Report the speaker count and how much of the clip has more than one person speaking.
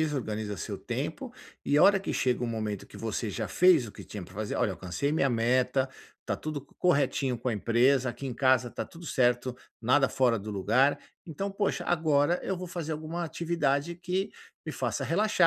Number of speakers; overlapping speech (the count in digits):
1, no overlap